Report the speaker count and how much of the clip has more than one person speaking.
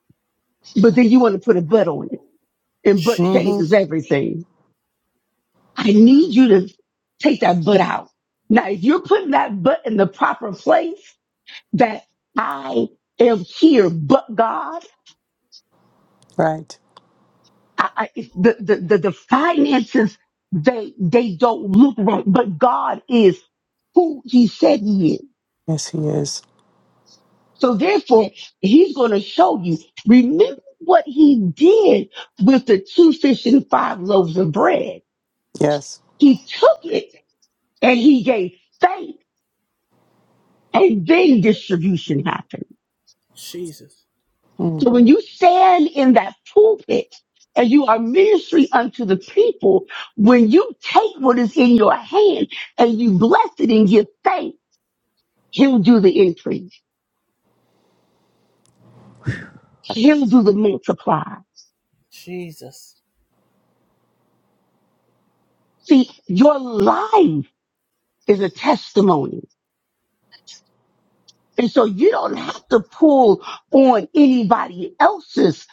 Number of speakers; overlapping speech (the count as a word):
three, about 1%